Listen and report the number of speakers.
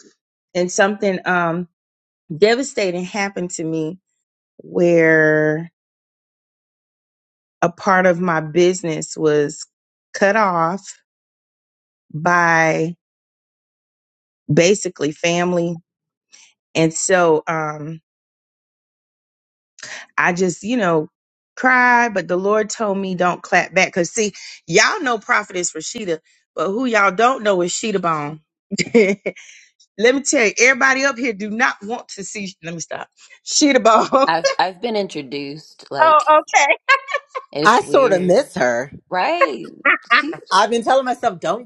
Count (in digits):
3